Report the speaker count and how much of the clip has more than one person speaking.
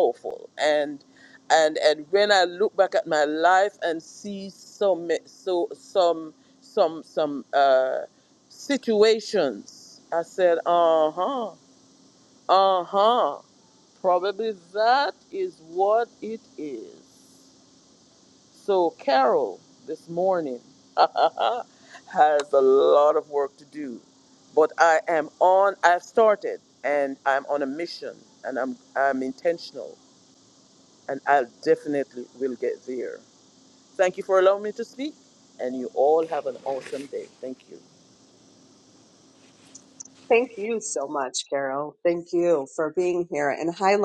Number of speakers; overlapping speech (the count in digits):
2, no overlap